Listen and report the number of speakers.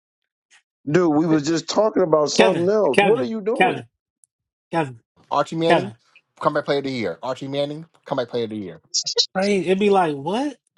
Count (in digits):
3